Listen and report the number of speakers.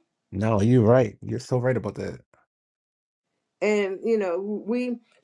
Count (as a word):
two